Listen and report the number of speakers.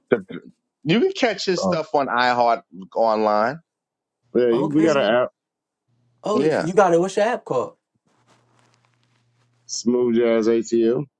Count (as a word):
three